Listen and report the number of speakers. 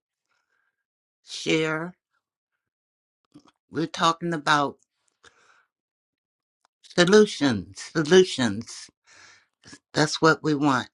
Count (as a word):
one